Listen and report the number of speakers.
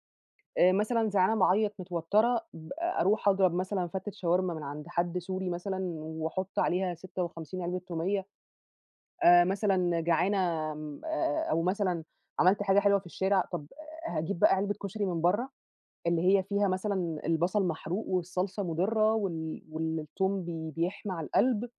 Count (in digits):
1